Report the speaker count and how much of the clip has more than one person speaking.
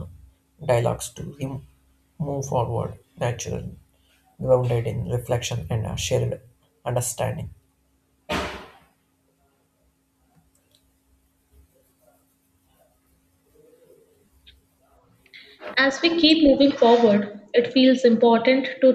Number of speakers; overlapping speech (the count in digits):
2, no overlap